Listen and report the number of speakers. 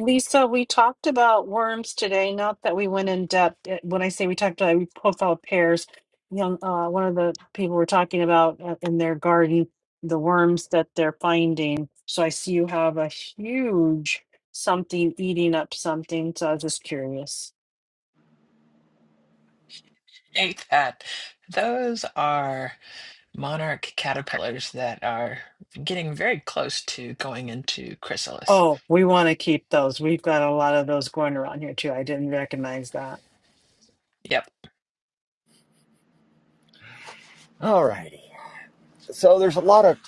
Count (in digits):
3